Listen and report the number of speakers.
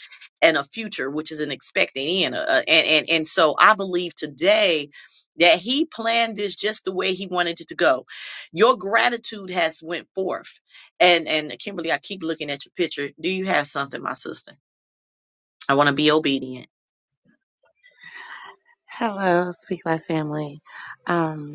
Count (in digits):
2